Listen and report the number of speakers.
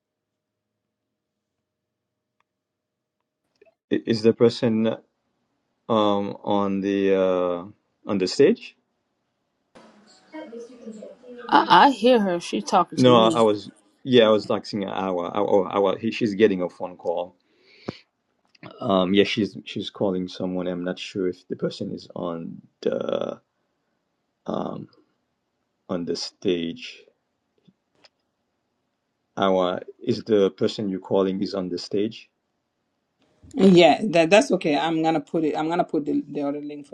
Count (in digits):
3